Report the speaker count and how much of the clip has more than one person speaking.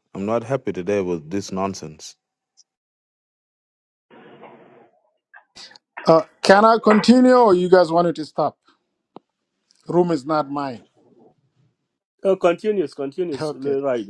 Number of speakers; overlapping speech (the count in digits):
3, about 3%